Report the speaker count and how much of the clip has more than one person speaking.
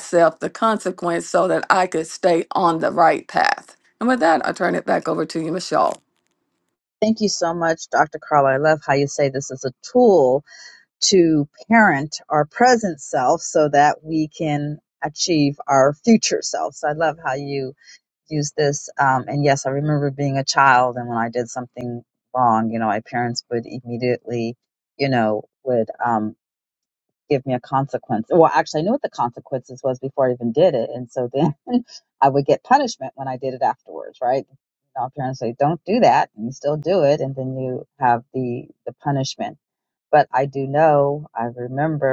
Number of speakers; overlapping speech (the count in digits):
2, no overlap